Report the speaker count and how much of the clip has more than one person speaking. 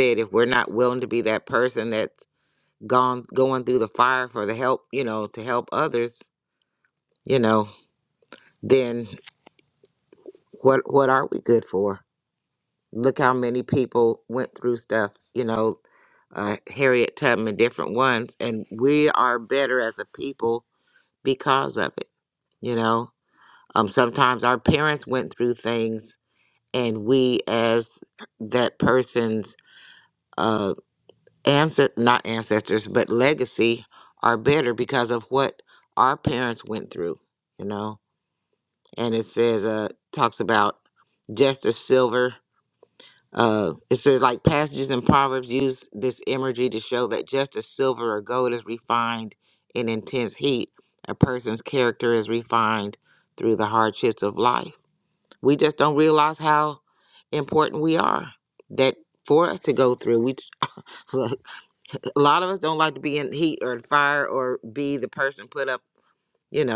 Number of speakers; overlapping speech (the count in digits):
1, no overlap